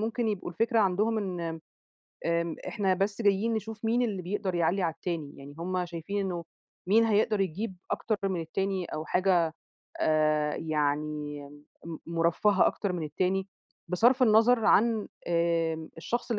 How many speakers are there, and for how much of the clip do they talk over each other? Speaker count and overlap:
1, no overlap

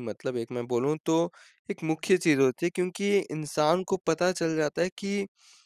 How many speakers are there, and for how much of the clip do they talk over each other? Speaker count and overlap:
1, no overlap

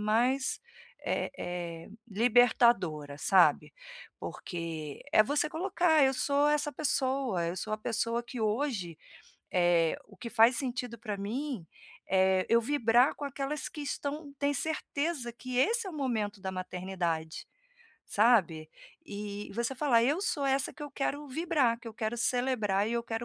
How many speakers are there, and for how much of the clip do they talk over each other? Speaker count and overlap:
1, no overlap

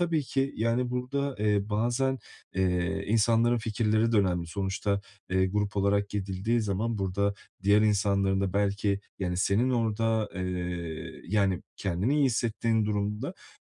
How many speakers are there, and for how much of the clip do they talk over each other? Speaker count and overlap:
1, no overlap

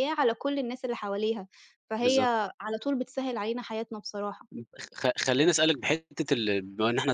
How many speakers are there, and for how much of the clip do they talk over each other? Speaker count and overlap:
2, about 3%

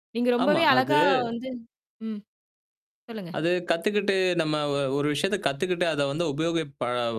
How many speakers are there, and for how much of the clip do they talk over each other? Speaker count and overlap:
2, about 9%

